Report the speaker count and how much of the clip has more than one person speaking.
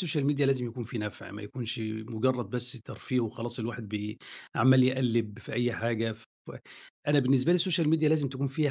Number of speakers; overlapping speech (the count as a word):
one, no overlap